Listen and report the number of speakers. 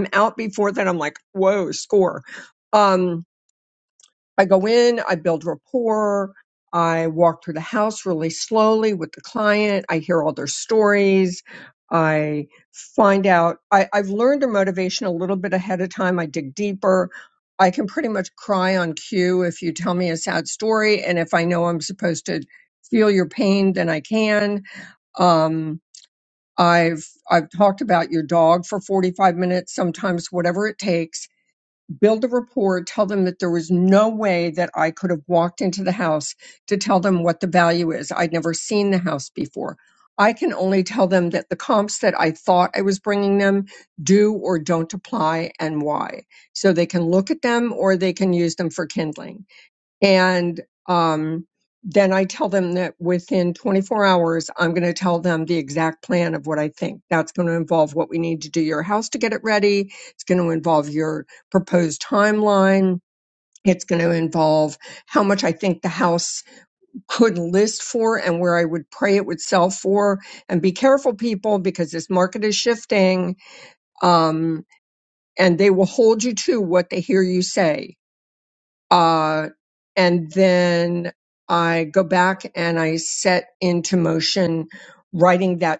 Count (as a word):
one